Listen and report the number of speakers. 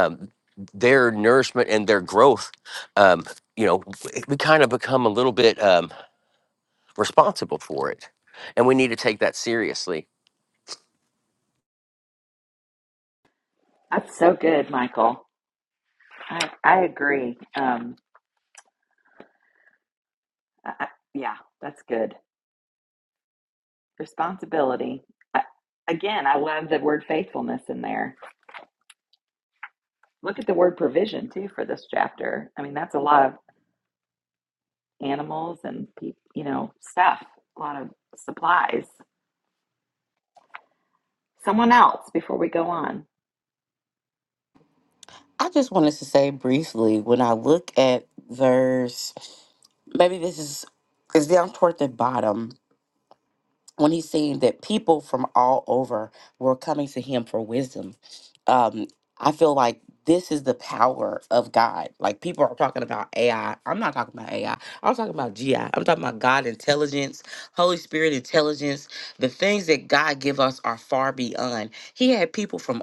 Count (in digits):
3